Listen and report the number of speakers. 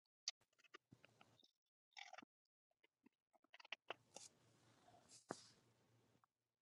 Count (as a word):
zero